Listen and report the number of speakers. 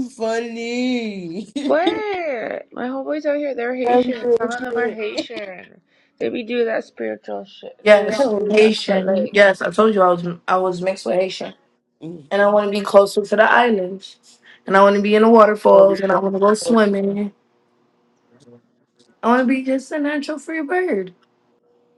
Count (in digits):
3